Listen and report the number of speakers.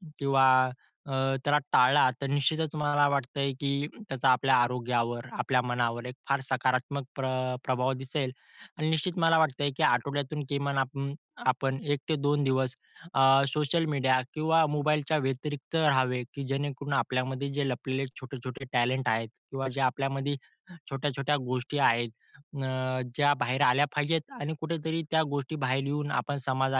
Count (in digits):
1